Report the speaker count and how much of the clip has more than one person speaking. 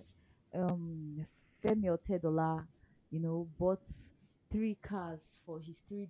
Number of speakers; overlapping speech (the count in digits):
1, no overlap